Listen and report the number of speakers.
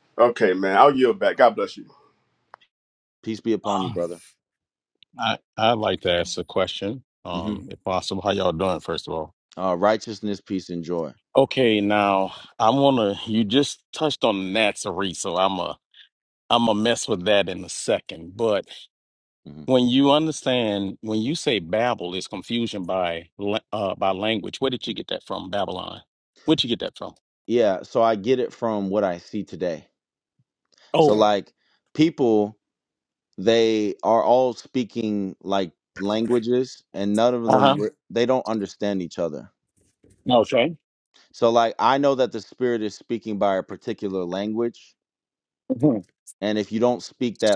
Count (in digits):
3